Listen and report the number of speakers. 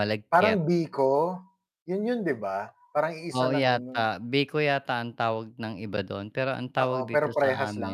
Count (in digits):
2